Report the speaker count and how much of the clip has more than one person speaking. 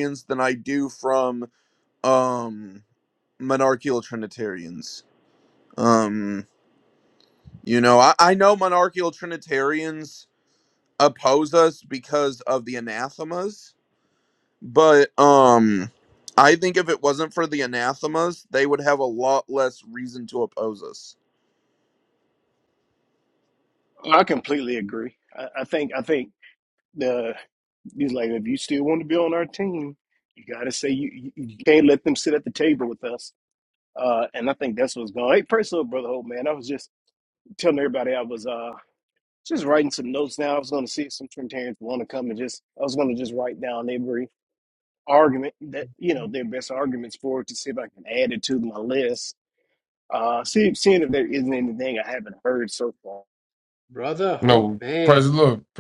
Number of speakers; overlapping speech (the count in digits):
4, about 1%